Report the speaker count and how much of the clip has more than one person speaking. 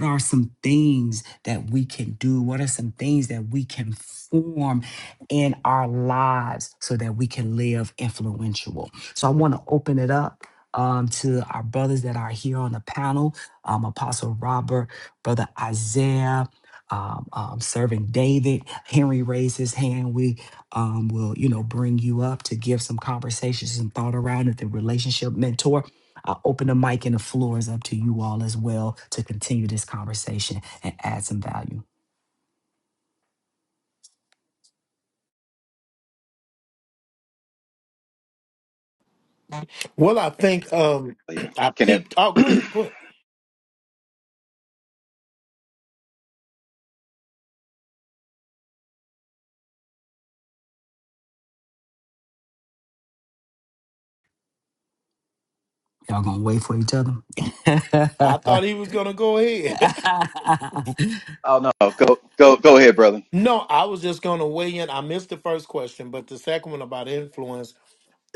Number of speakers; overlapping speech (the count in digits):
3, about 1%